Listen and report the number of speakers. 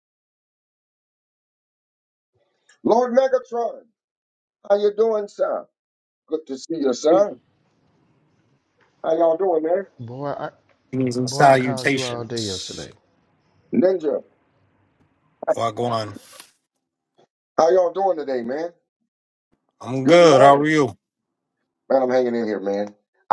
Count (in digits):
3